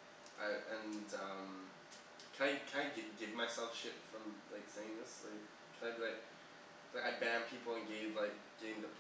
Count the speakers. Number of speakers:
1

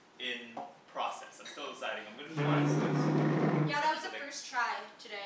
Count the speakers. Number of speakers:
3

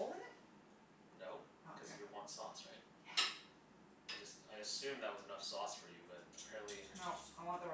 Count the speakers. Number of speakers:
2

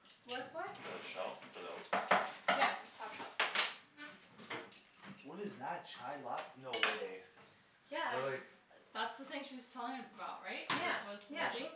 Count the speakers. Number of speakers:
4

